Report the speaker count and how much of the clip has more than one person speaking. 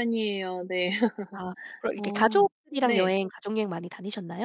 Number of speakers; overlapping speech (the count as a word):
two, about 17%